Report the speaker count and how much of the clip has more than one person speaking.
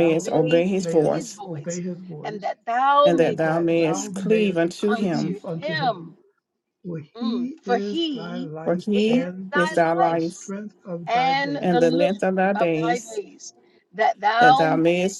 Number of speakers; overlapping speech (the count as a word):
three, about 63%